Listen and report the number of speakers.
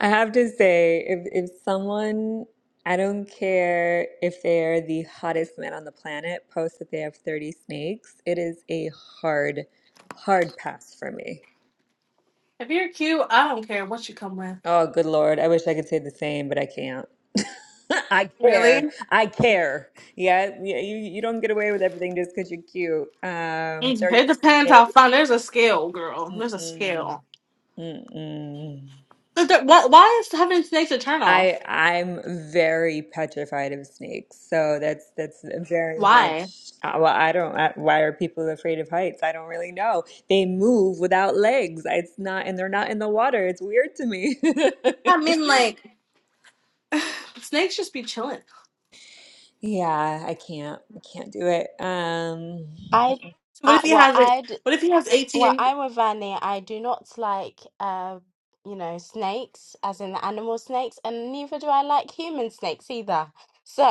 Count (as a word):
three